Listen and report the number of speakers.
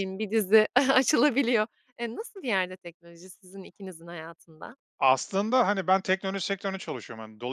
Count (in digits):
2